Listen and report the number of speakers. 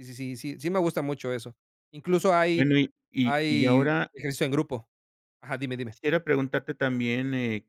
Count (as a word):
two